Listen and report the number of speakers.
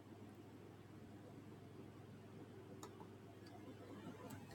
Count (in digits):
0